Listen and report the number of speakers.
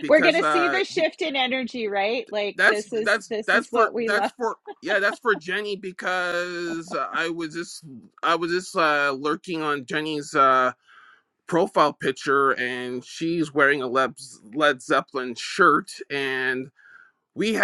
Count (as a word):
two